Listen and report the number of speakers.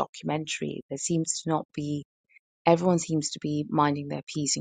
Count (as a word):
one